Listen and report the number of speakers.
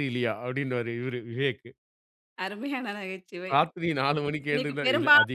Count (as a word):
two